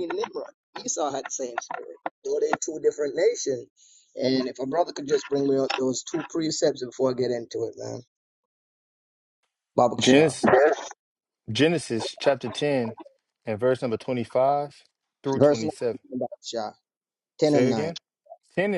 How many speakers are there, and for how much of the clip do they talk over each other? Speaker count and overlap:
2, about 6%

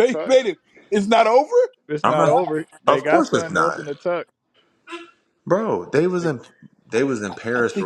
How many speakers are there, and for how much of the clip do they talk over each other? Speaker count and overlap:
3, about 26%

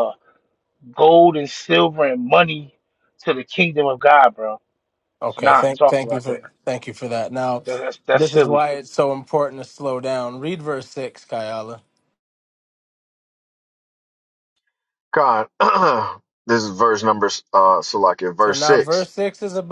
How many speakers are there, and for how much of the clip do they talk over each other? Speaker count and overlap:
3, about 10%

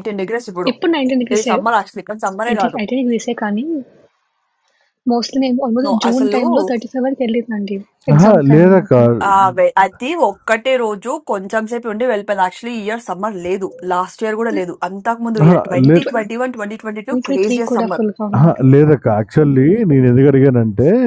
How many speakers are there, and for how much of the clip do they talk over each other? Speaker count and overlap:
3, about 20%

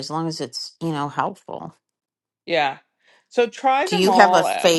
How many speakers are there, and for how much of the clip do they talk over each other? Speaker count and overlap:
2, about 19%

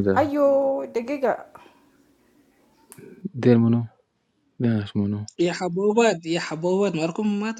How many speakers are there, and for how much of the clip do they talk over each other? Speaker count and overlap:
3, about 1%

